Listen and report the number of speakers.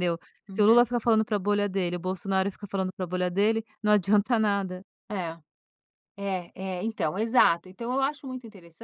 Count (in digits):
2